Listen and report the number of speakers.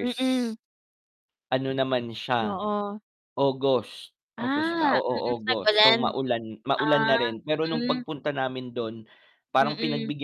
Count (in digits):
2